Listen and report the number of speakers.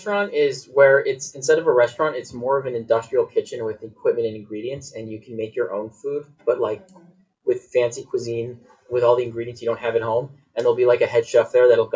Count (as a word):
one